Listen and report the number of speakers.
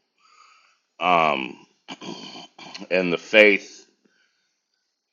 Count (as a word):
one